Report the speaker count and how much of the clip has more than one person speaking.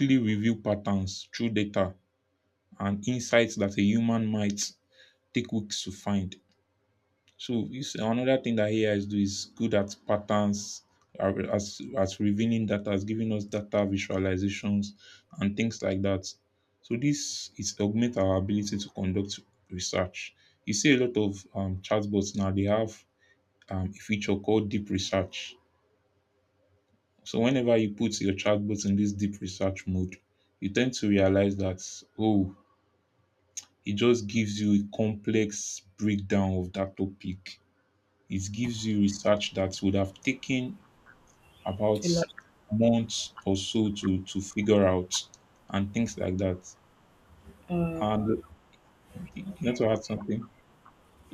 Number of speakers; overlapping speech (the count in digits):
2, about 2%